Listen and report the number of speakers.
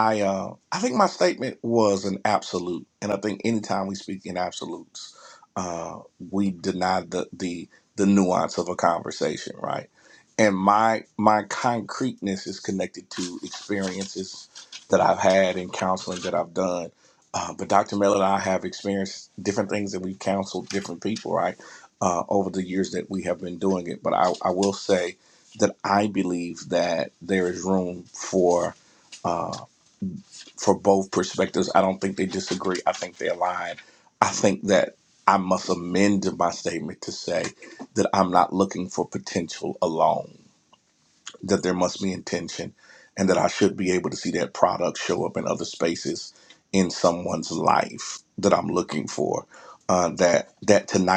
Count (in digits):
1